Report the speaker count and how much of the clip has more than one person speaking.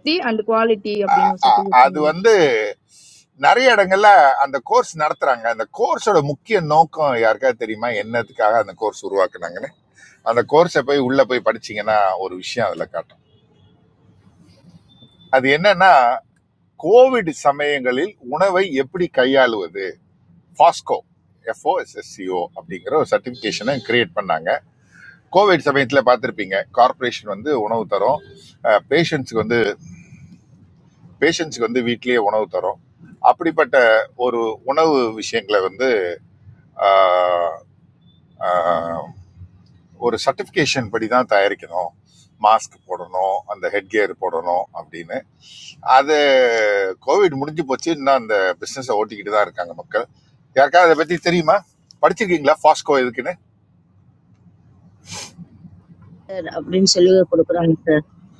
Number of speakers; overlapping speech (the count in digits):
3, about 2%